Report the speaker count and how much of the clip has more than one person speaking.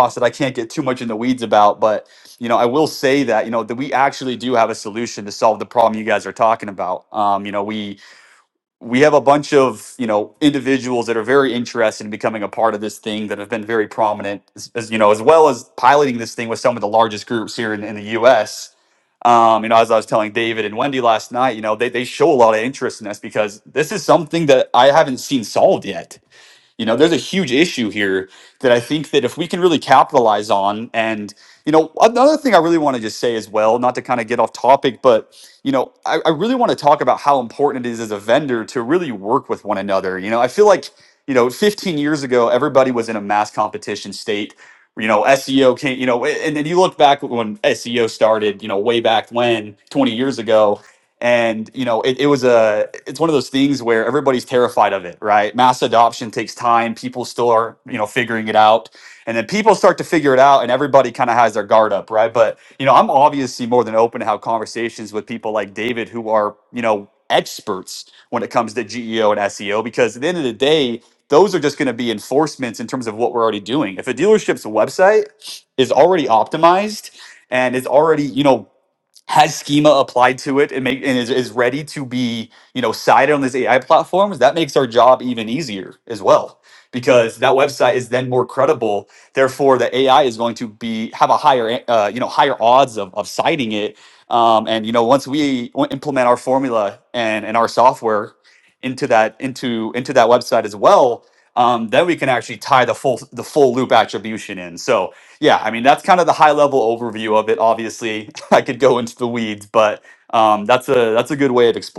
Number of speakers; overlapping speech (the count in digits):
1, no overlap